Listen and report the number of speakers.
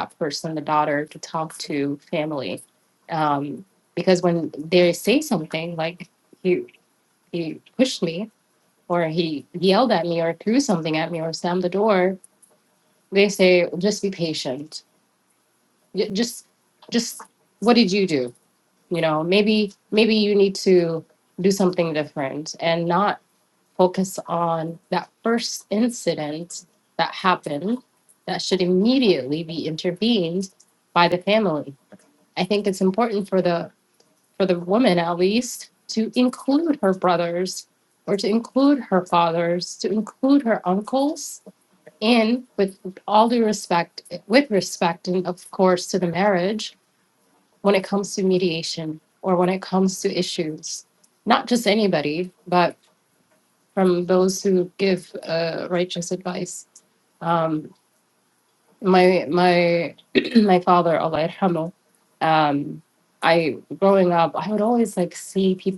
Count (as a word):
one